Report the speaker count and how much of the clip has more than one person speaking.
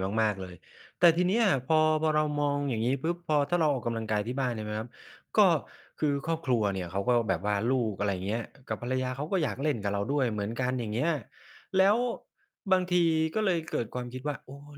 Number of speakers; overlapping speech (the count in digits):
1, no overlap